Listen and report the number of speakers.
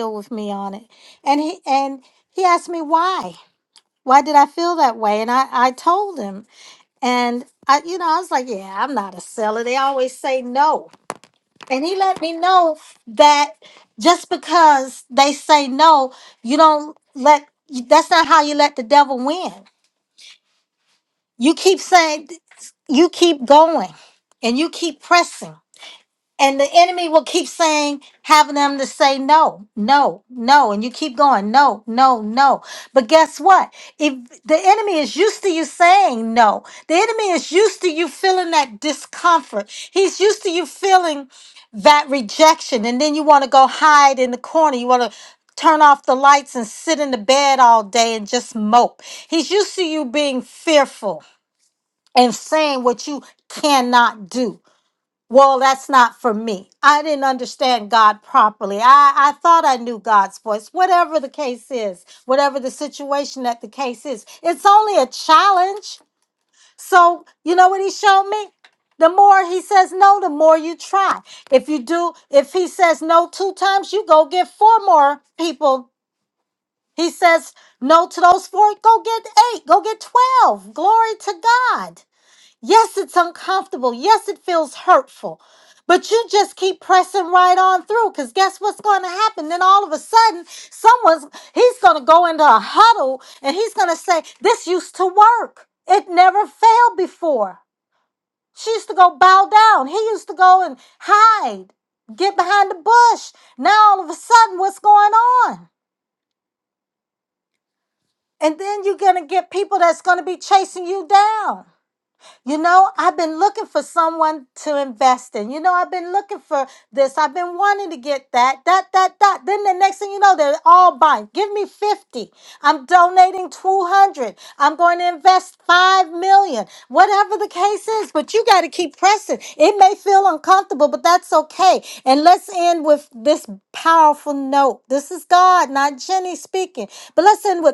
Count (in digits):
1